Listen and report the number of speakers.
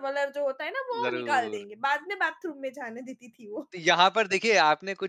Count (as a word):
two